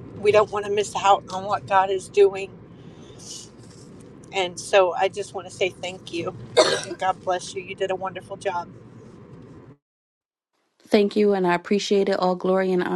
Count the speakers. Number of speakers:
two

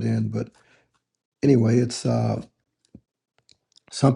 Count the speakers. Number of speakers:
one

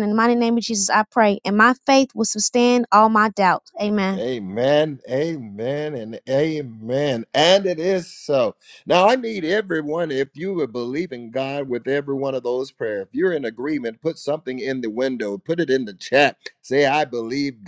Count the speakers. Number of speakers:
two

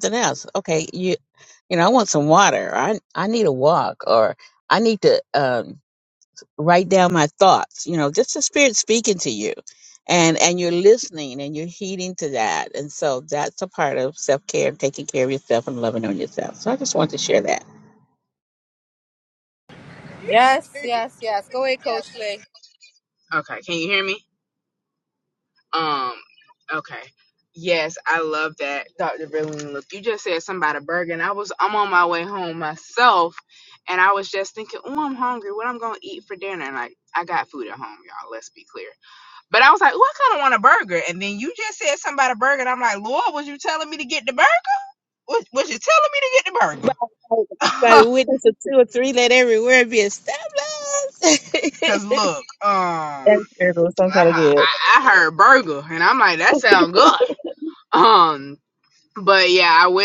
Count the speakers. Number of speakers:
three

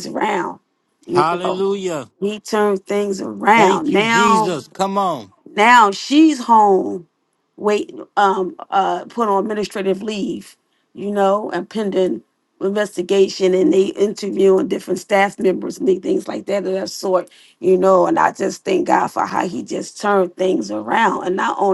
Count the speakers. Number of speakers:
two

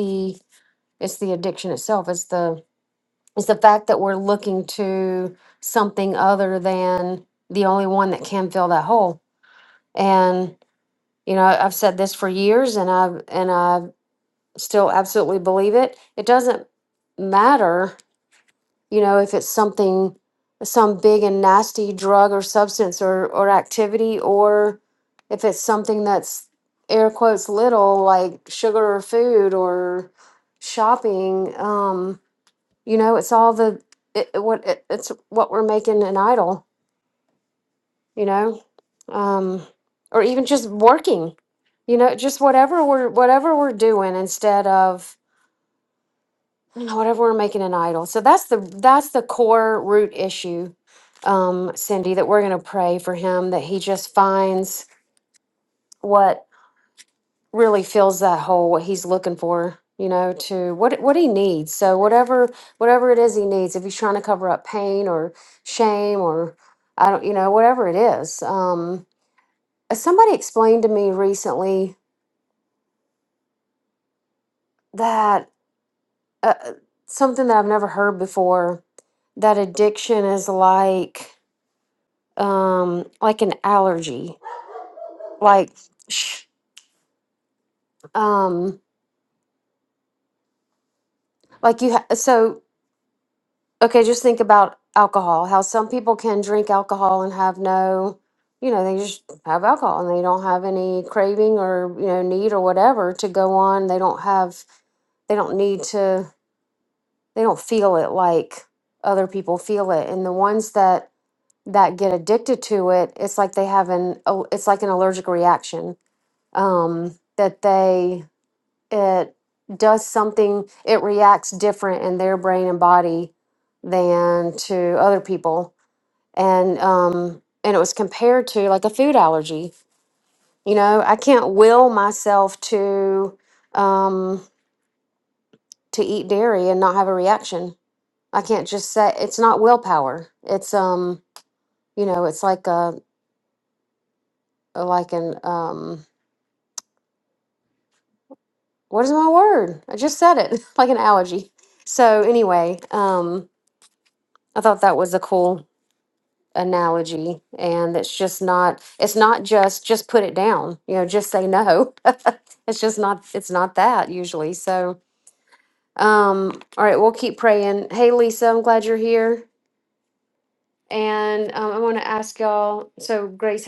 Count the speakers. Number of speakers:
one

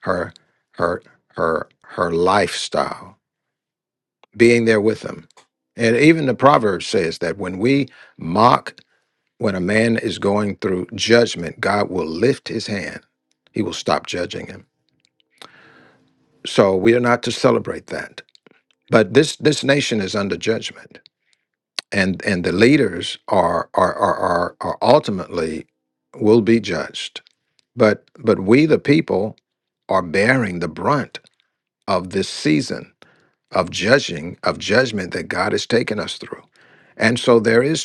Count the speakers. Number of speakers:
one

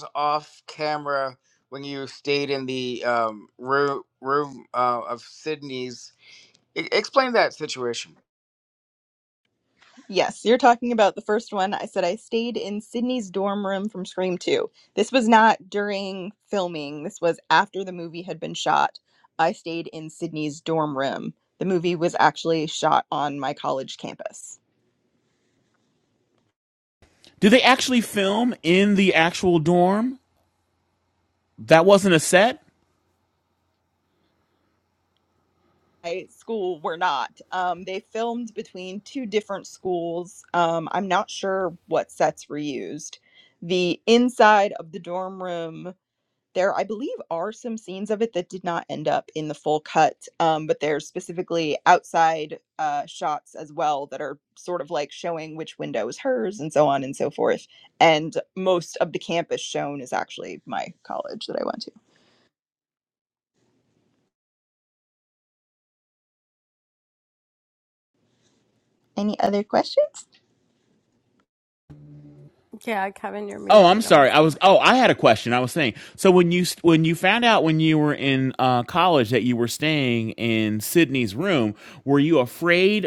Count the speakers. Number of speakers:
four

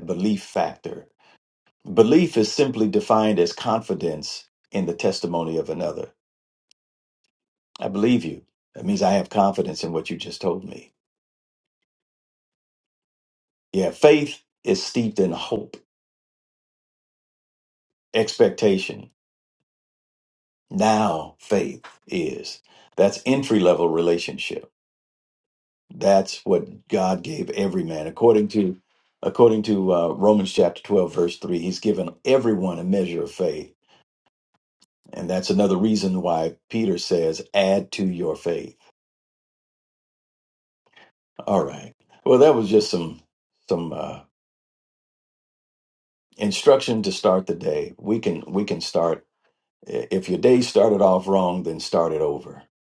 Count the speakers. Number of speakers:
one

